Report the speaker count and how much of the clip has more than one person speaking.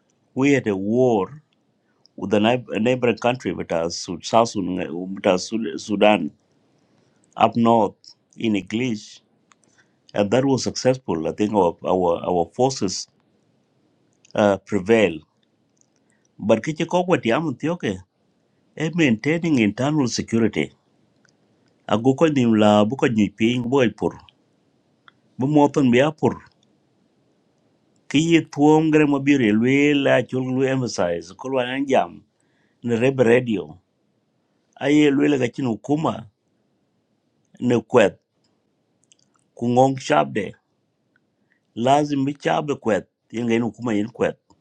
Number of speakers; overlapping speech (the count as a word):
one, no overlap